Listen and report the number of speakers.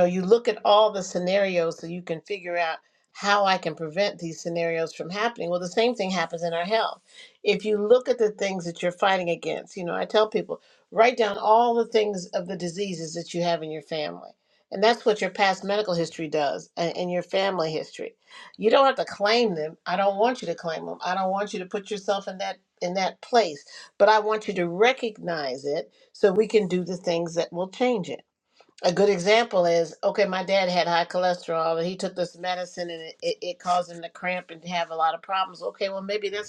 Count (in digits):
1